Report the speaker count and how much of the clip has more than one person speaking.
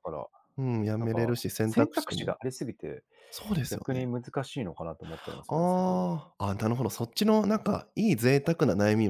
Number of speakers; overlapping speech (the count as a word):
two, about 21%